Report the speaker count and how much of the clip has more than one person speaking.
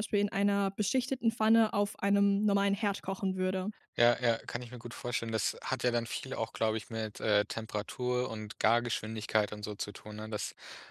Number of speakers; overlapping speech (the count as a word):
two, no overlap